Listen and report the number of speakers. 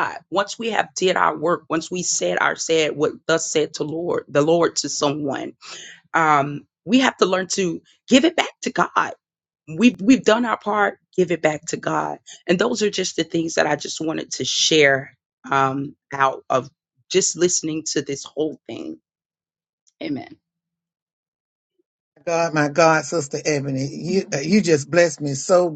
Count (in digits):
2